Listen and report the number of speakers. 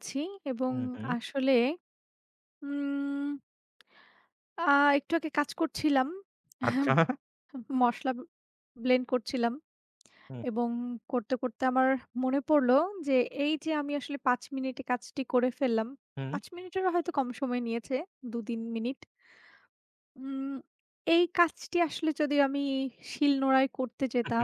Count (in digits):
2